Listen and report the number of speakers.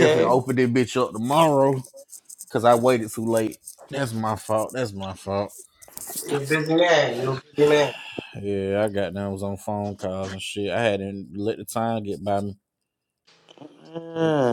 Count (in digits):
3